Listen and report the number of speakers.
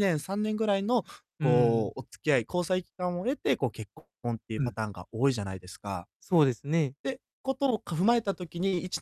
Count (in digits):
2